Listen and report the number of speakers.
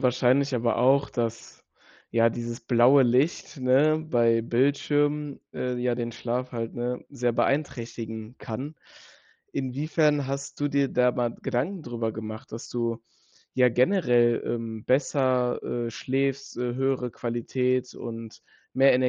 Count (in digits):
1